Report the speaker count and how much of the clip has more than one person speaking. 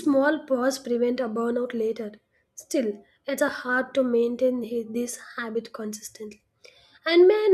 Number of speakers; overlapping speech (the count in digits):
1, no overlap